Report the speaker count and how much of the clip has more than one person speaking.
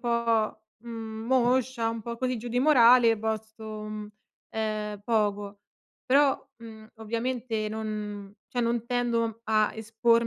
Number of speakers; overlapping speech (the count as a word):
one, no overlap